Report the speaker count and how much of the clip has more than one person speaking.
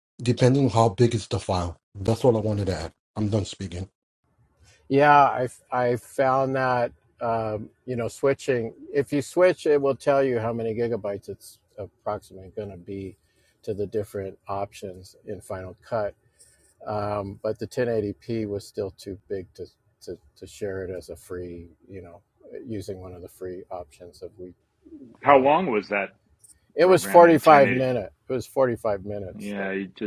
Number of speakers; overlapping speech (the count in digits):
3, about 5%